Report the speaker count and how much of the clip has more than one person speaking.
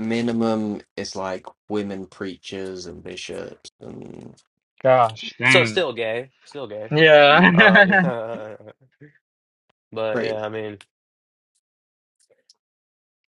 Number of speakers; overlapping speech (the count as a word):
three, about 9%